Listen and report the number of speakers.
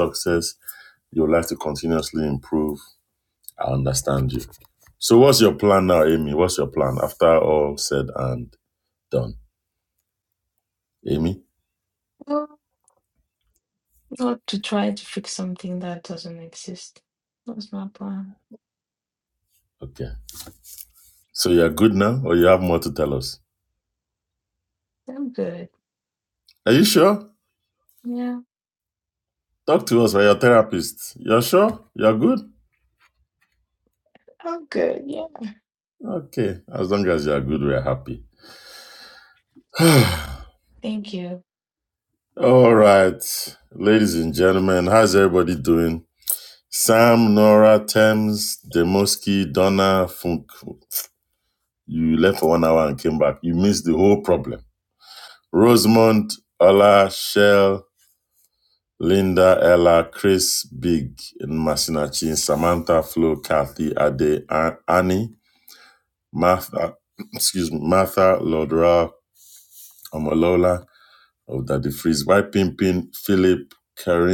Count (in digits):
2